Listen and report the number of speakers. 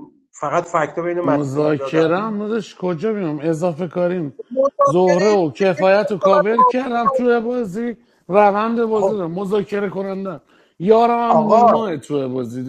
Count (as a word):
two